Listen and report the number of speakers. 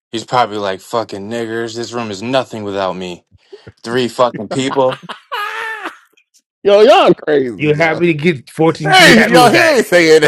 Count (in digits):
3